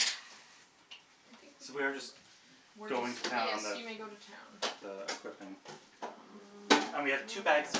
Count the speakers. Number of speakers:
three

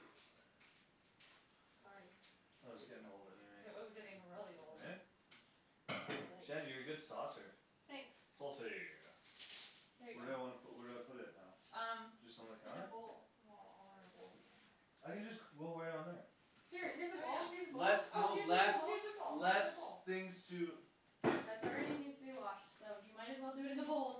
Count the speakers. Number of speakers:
three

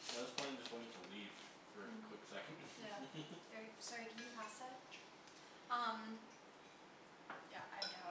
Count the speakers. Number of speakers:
two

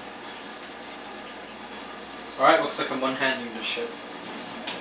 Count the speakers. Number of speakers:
one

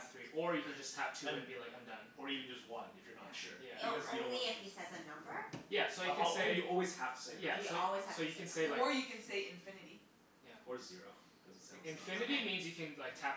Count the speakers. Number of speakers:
four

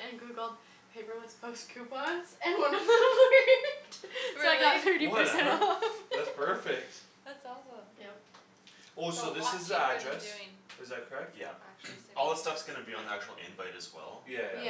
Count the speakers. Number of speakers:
four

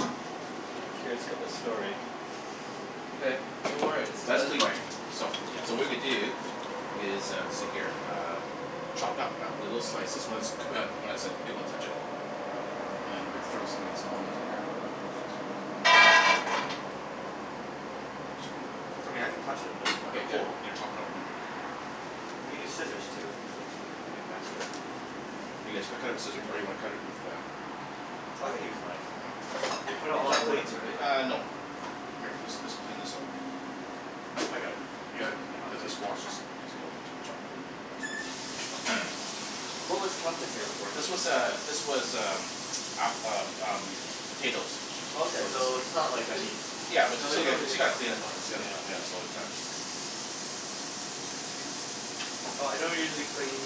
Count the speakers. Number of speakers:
three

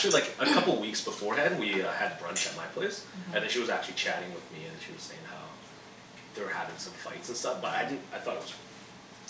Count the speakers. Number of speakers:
one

